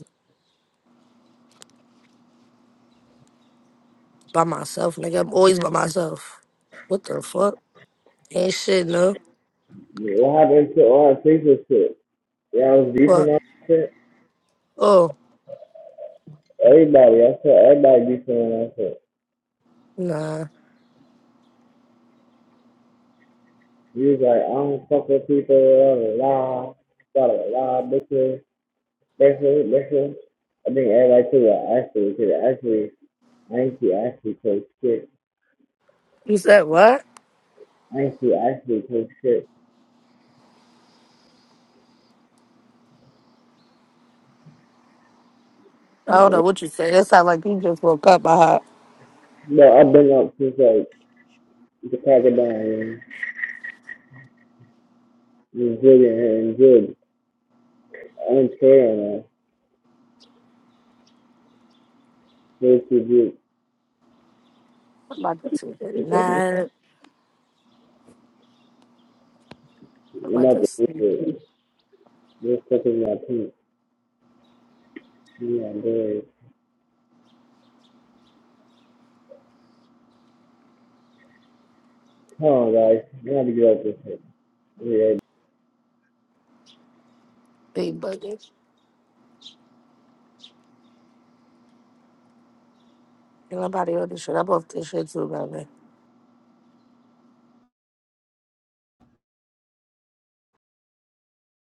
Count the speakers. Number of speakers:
two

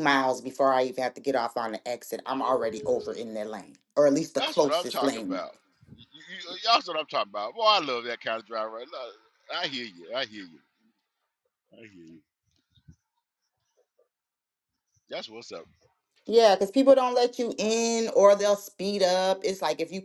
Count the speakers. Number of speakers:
two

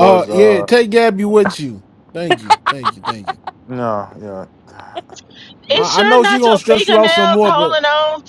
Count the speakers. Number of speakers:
three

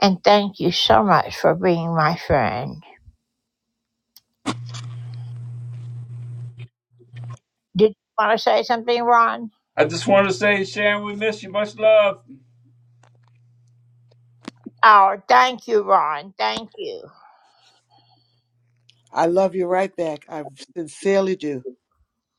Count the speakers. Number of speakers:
three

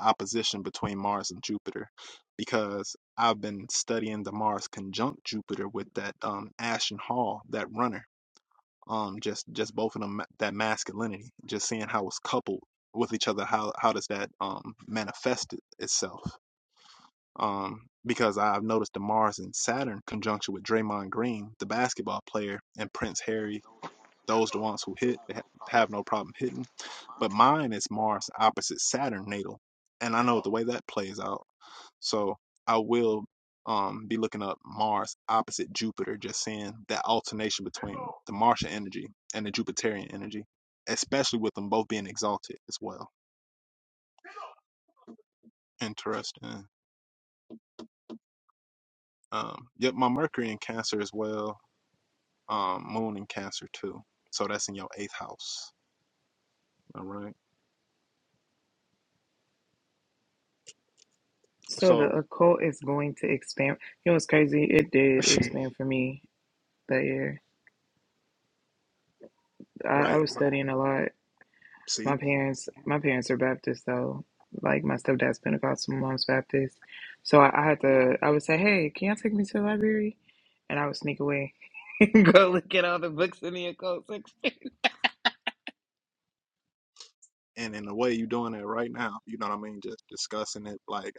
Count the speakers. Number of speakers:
two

